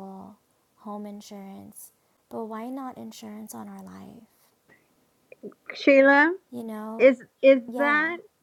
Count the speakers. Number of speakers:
two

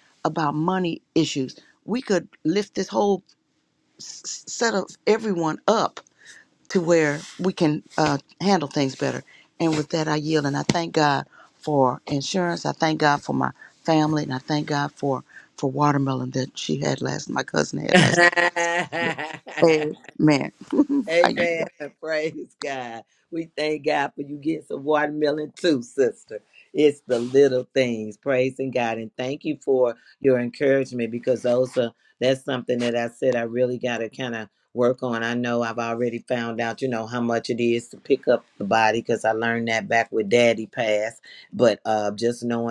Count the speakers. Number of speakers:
two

